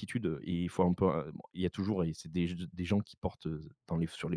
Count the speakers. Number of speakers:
one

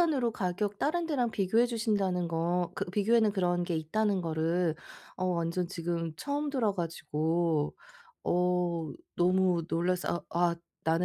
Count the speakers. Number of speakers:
one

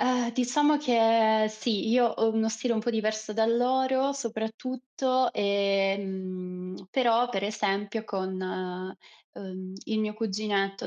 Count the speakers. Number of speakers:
one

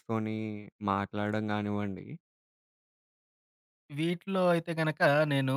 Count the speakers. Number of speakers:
two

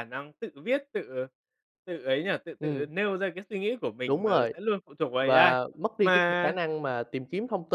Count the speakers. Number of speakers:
two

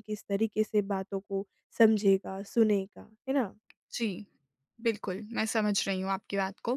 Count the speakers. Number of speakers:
two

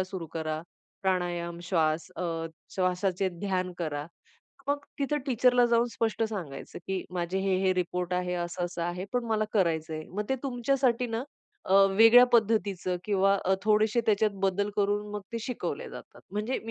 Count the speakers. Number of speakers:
one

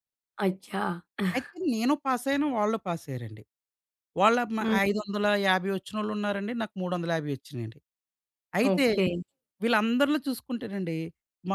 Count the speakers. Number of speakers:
two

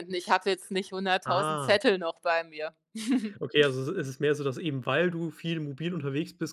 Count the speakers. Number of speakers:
two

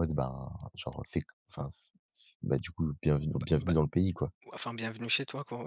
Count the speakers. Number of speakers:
two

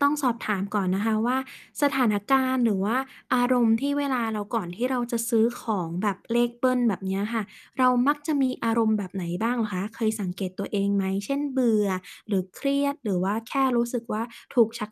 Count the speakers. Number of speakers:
one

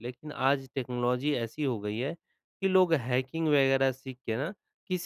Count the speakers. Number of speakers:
one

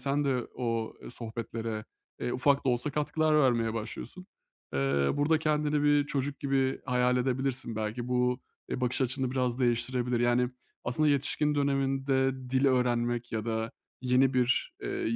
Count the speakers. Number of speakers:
one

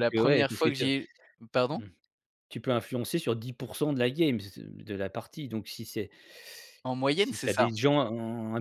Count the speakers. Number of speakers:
two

